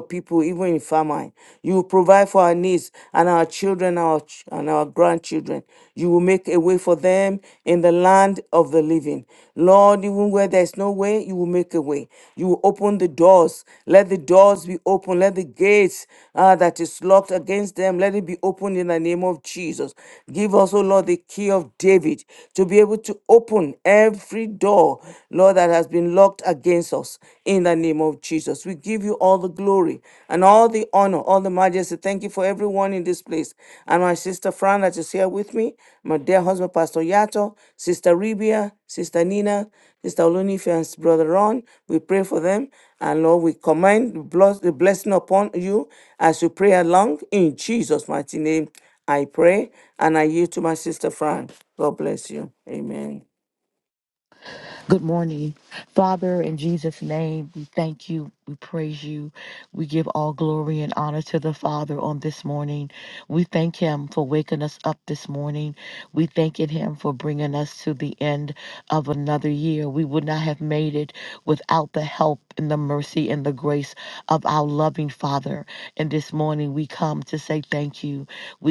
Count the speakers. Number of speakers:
two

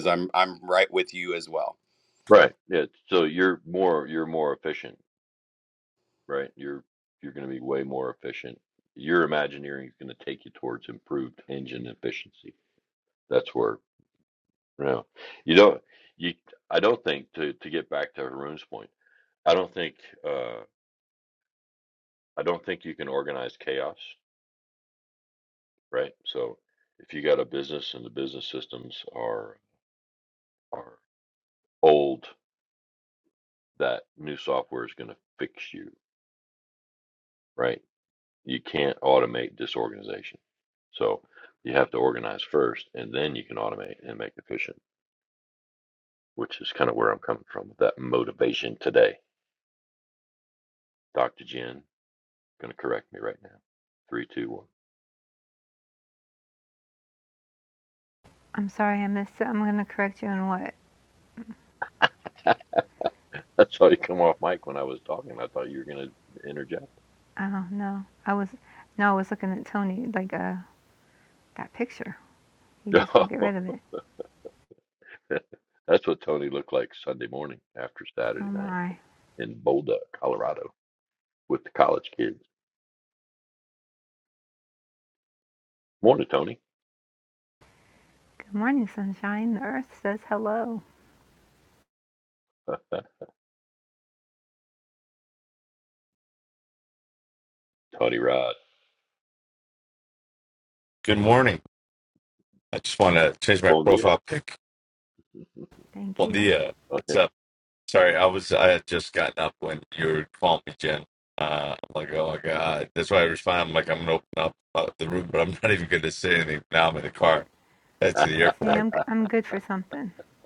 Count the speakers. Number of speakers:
four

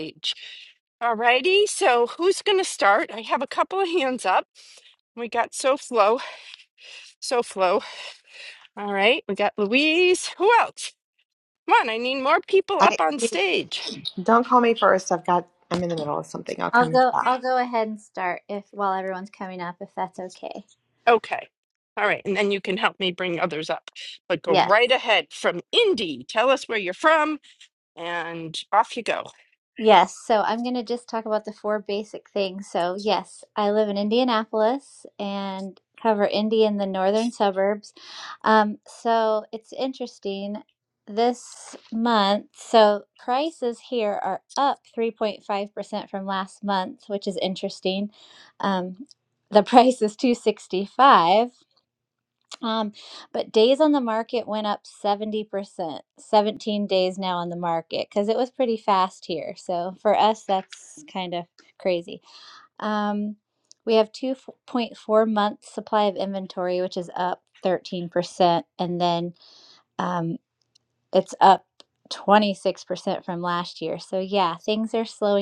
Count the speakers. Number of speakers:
three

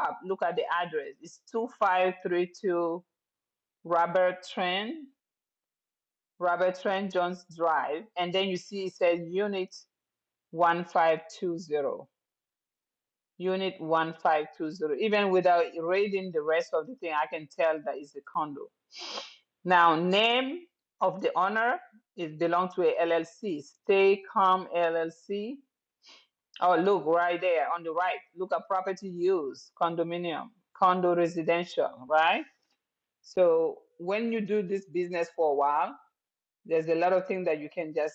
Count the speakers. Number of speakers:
one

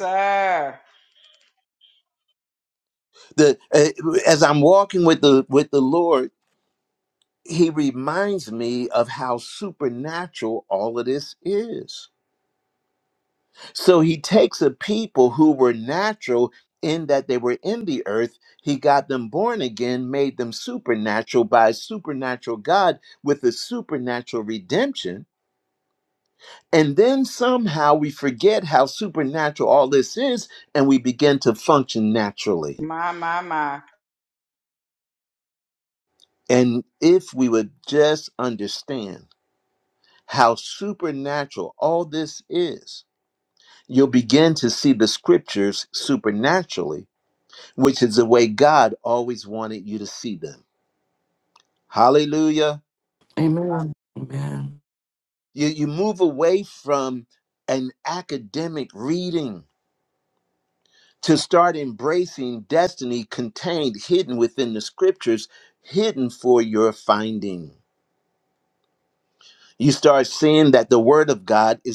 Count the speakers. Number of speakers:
three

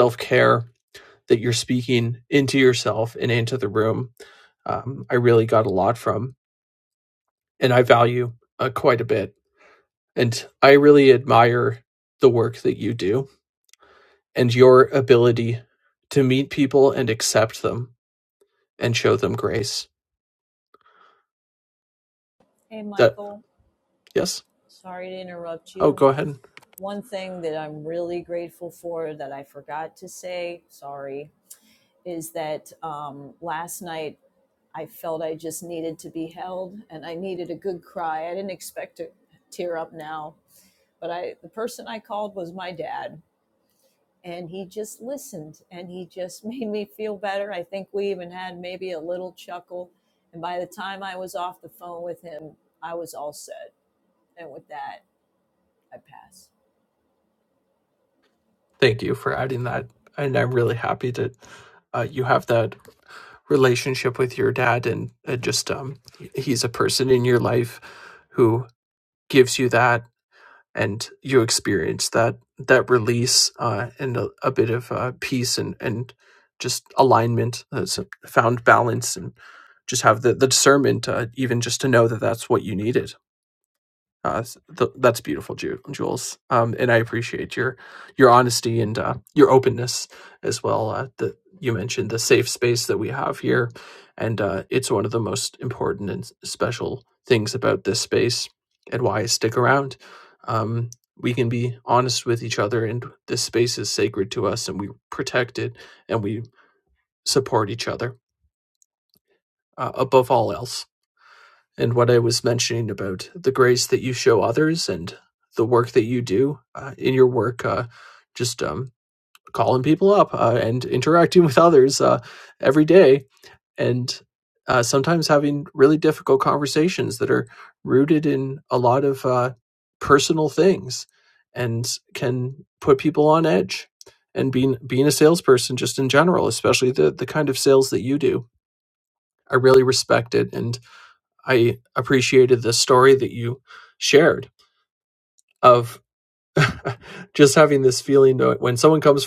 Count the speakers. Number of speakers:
two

